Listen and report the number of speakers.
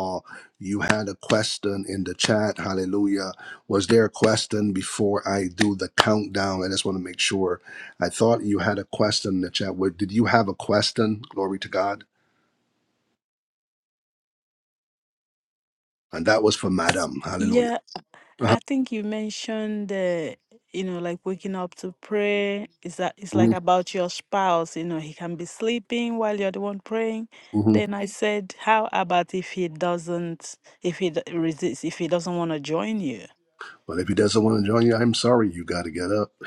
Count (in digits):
2